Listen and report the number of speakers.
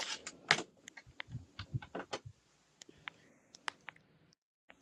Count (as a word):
zero